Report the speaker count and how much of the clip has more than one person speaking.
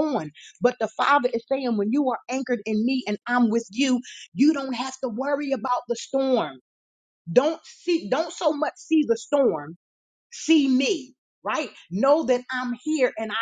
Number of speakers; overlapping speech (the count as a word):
one, no overlap